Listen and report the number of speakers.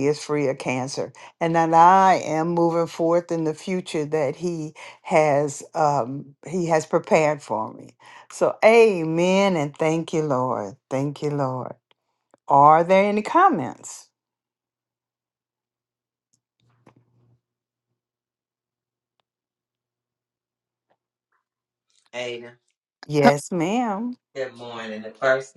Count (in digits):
2